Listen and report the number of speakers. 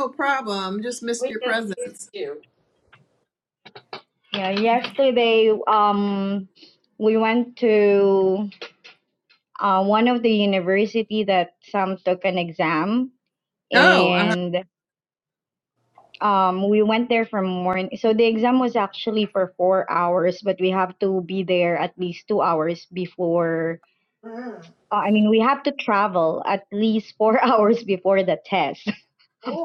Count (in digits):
3